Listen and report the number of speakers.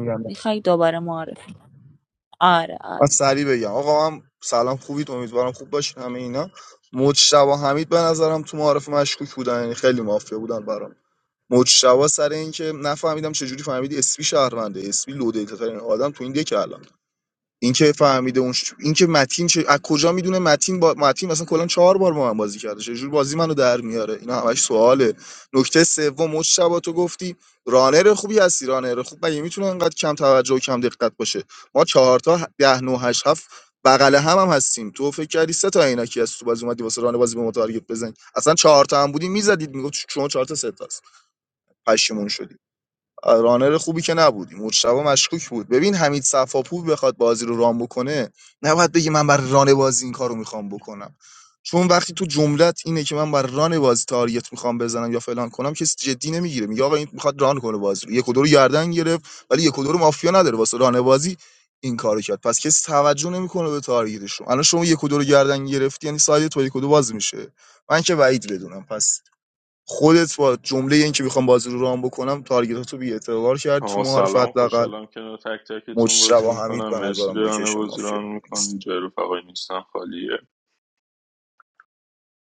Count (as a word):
three